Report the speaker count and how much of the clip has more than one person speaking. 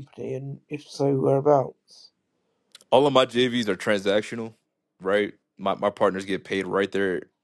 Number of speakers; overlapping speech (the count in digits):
2, no overlap